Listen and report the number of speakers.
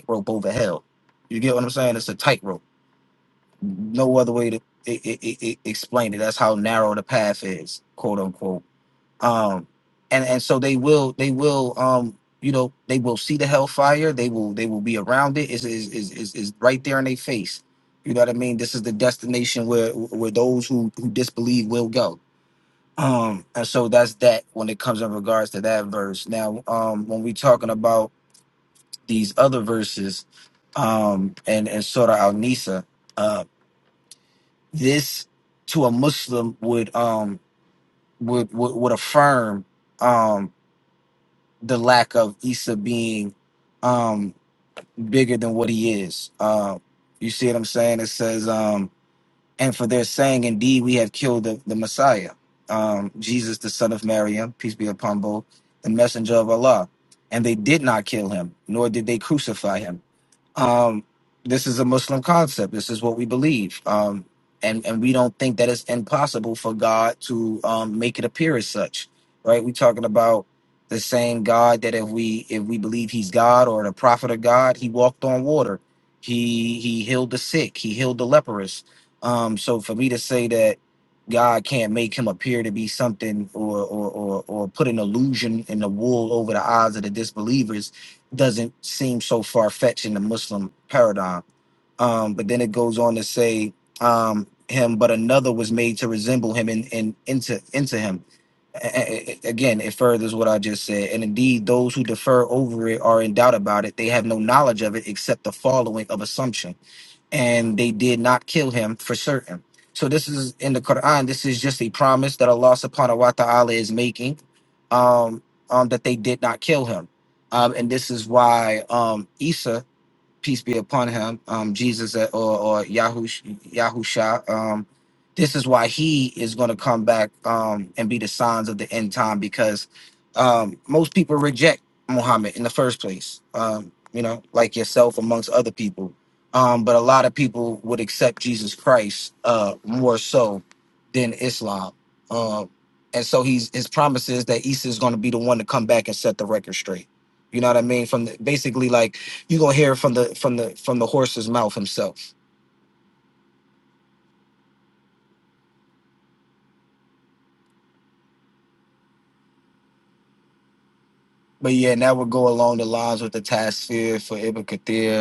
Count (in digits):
1